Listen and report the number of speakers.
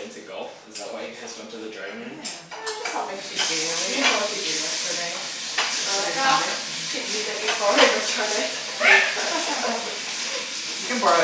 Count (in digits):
3